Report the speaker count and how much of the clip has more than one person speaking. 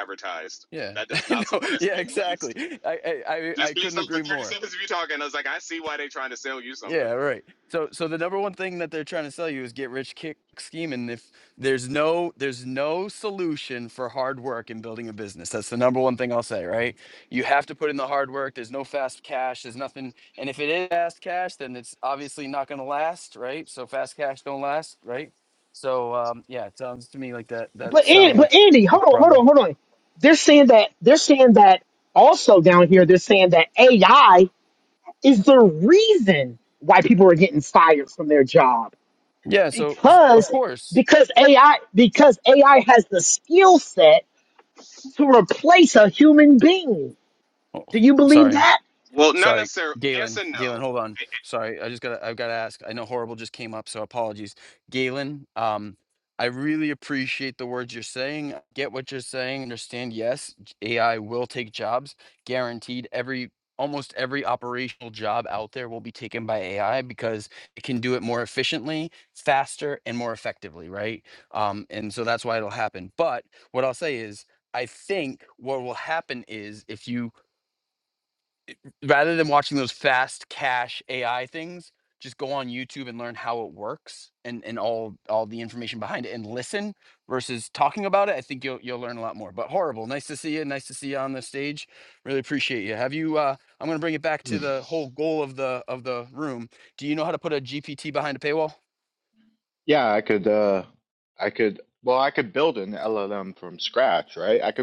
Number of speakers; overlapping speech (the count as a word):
four, about 6%